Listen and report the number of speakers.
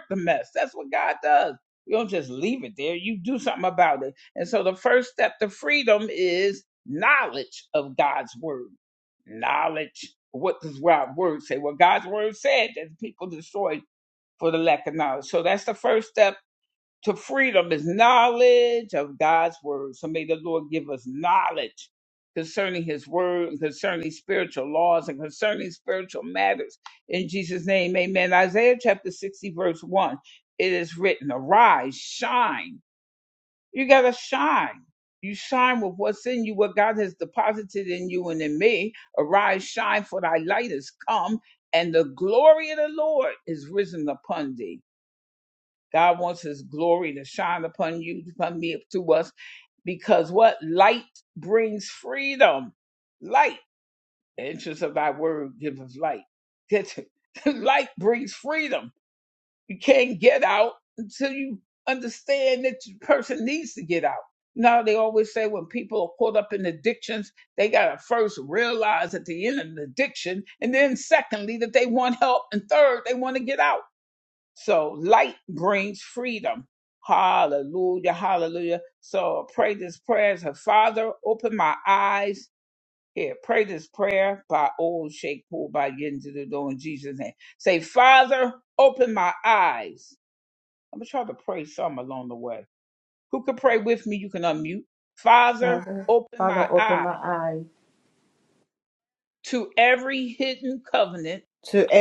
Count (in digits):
2